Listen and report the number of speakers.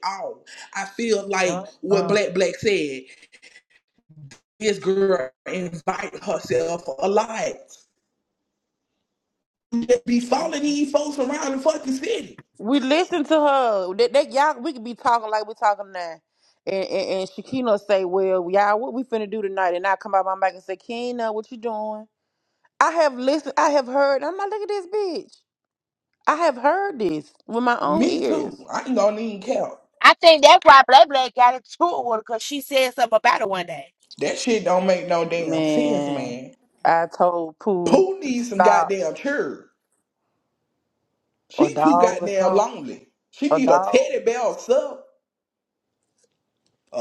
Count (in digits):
3